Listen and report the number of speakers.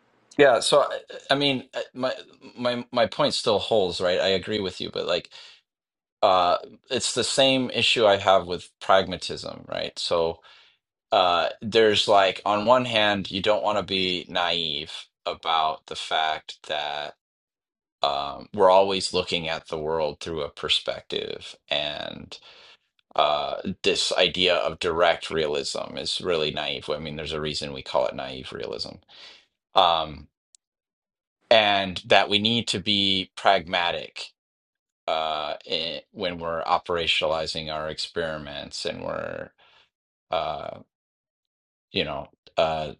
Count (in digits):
1